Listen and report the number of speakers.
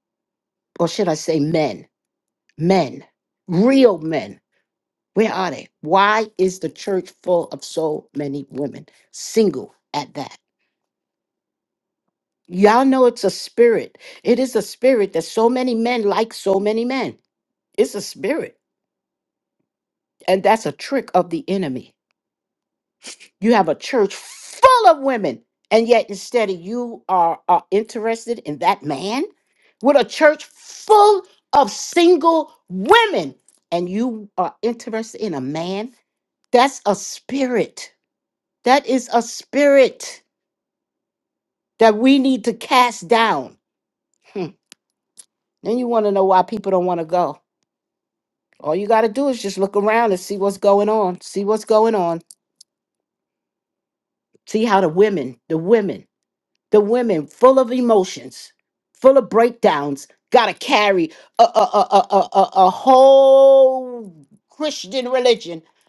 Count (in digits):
1